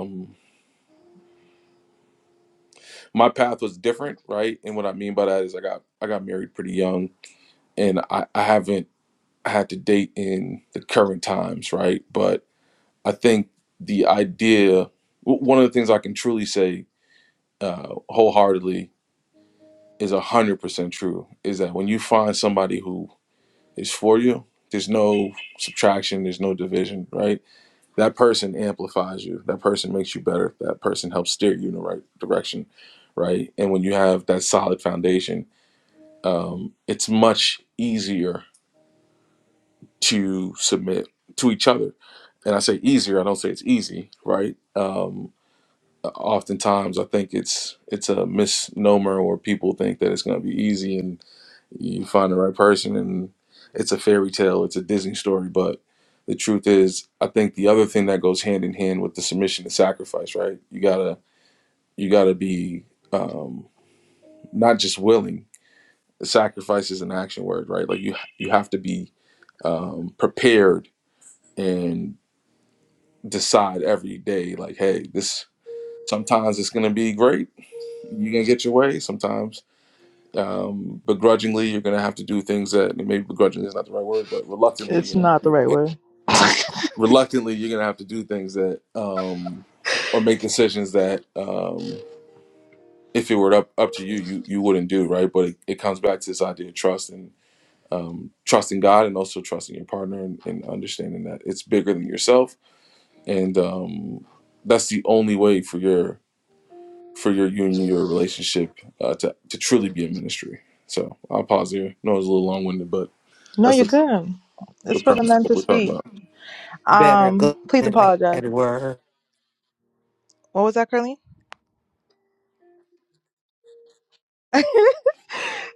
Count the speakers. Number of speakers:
three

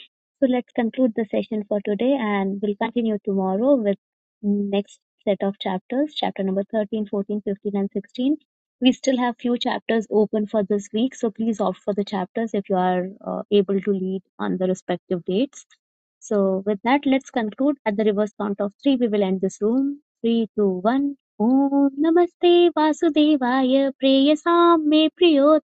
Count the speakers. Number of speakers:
one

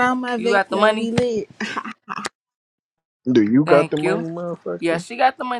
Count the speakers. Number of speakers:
three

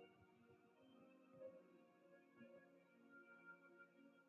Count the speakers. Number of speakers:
zero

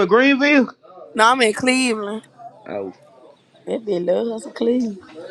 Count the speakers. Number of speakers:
three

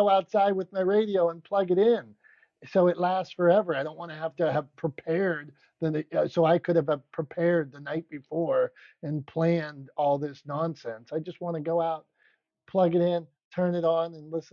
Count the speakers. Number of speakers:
one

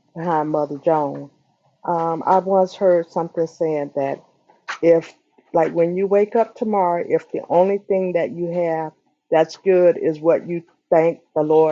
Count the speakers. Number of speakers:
one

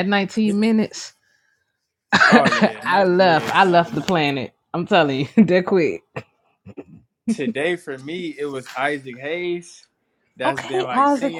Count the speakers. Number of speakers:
two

